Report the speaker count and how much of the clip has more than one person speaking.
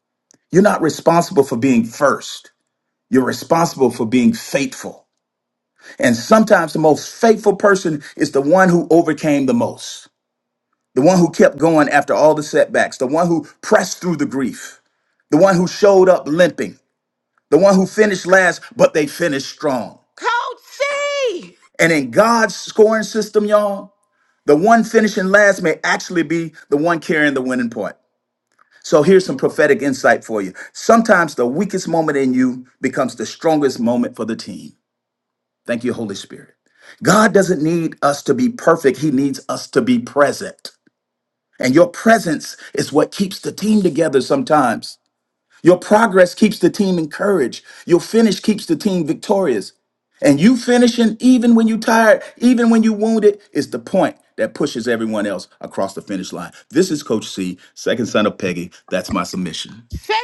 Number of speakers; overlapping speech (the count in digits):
2, no overlap